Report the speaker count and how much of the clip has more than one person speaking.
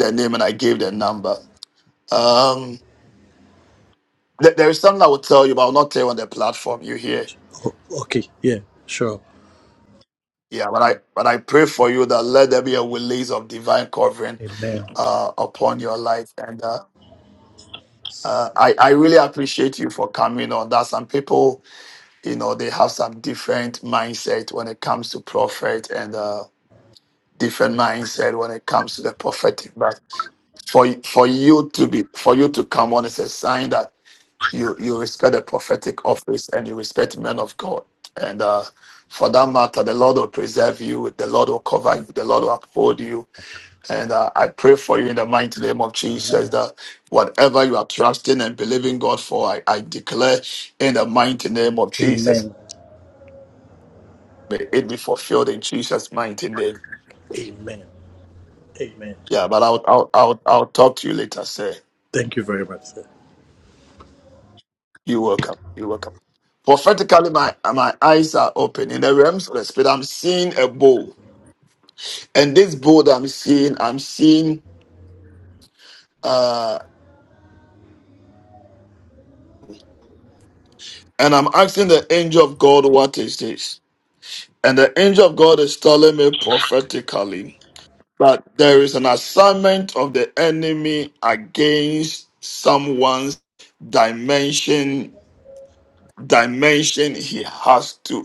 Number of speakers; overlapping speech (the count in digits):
2, about 1%